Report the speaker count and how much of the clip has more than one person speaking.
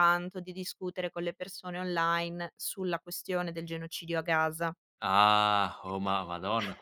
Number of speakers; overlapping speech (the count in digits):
2, no overlap